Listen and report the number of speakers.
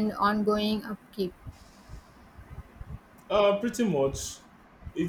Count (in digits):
2